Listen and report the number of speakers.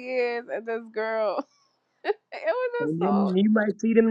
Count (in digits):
2